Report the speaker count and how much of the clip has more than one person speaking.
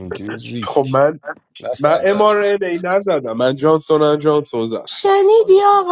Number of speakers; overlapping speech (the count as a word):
three, about 15%